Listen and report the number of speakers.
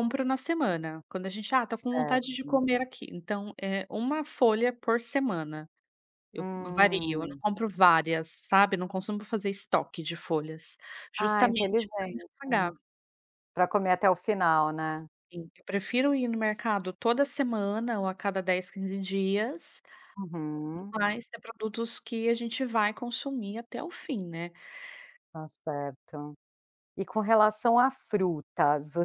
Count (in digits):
2